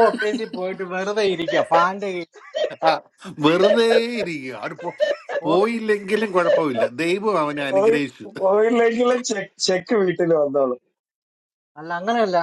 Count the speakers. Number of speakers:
three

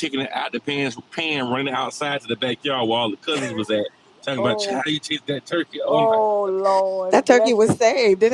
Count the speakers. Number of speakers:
three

